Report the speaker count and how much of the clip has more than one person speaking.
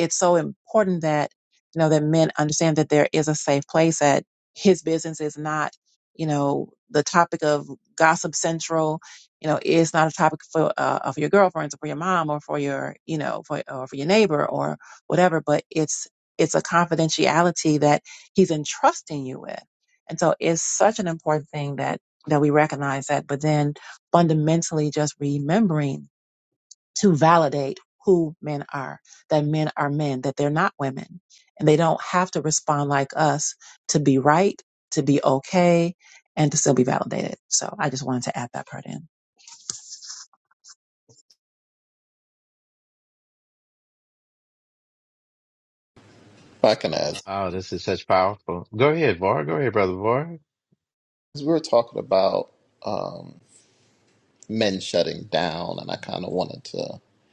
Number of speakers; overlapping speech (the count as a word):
three, no overlap